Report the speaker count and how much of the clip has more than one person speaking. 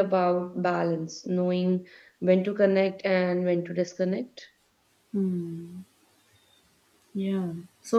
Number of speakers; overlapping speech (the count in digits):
2, no overlap